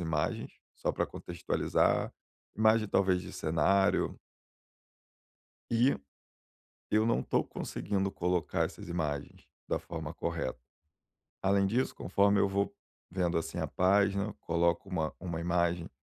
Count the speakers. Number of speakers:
1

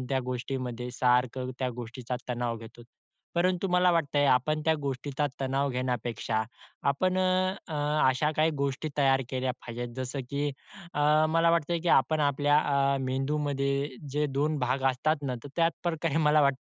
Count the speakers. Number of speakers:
1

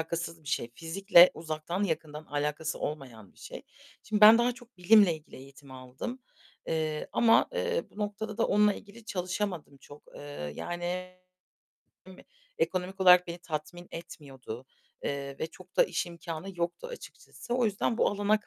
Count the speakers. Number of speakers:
1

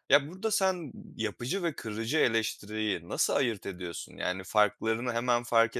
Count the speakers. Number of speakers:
1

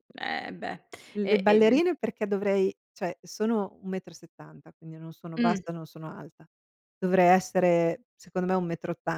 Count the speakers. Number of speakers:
2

